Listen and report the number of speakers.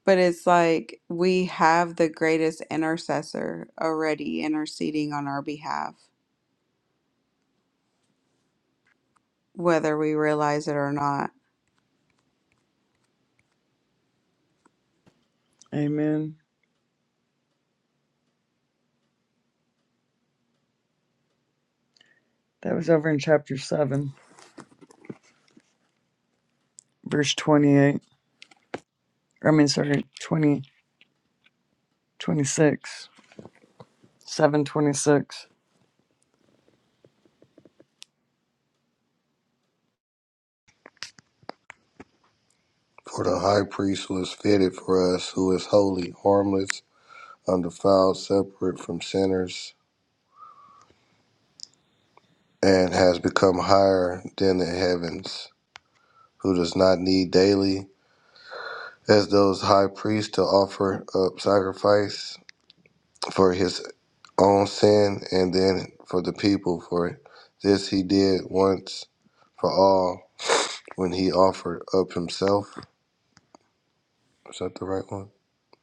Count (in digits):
3